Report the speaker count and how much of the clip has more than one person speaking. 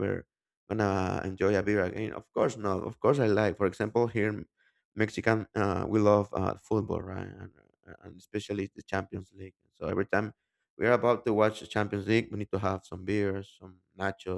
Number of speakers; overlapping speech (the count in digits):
1, no overlap